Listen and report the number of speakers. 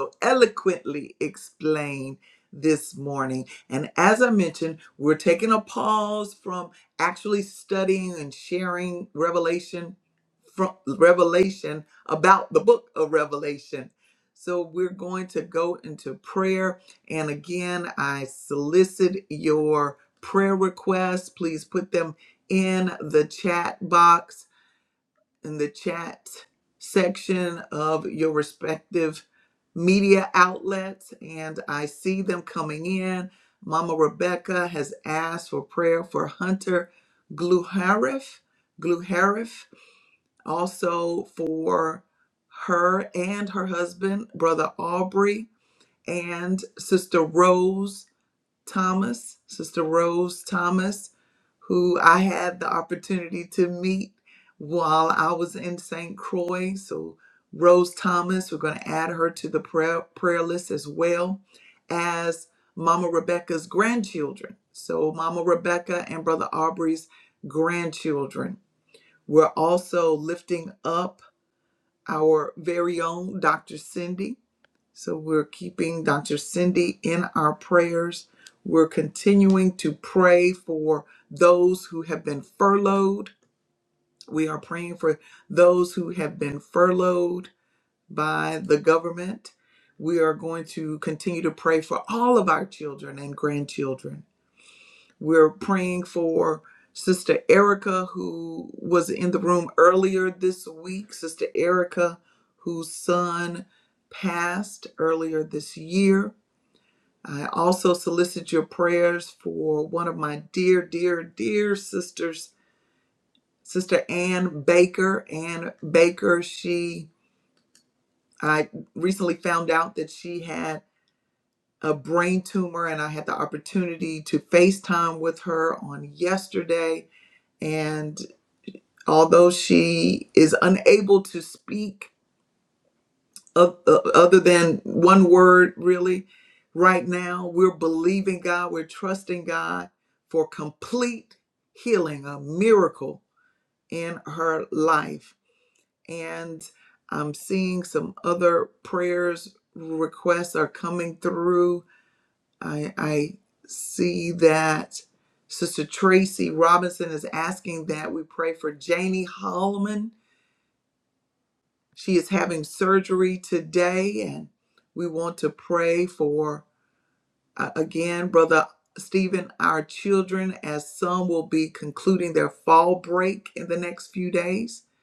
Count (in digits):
1